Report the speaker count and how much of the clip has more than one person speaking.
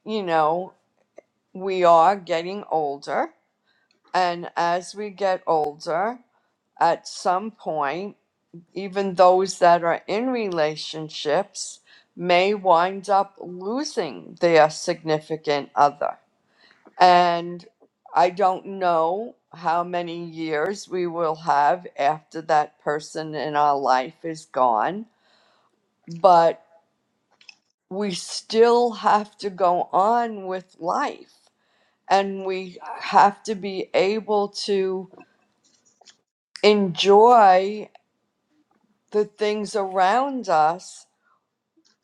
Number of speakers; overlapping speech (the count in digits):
1, no overlap